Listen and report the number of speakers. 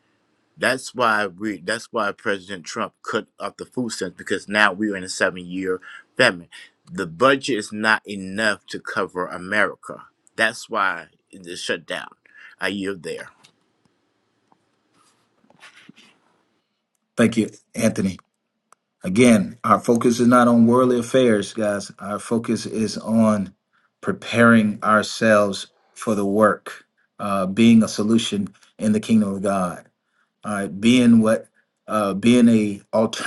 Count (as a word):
two